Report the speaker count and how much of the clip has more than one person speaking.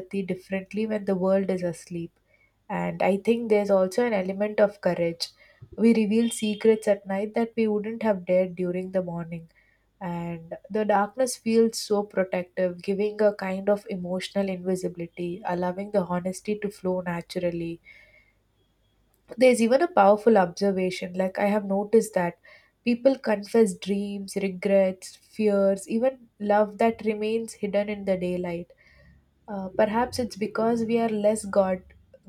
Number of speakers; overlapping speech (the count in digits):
1, no overlap